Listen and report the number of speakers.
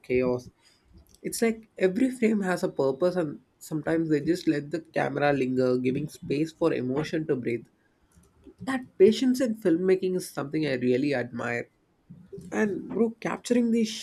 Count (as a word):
one